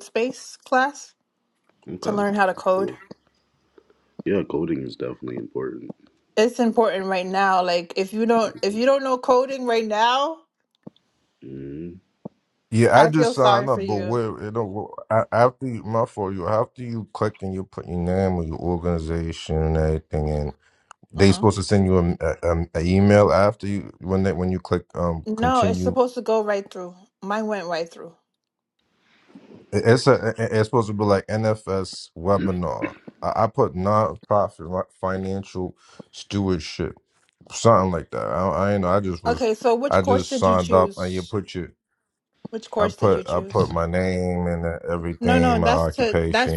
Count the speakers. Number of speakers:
3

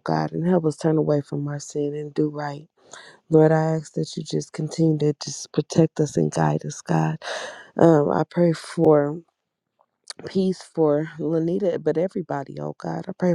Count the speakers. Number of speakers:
1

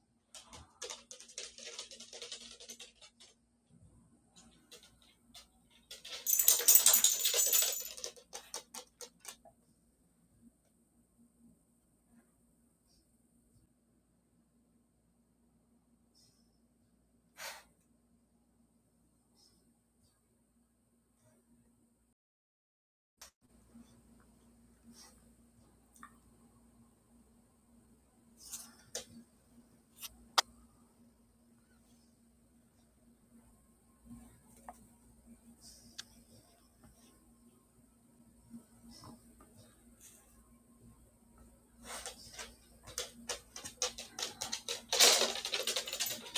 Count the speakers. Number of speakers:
0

